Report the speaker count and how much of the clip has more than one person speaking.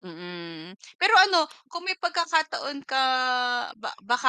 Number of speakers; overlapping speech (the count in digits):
1, no overlap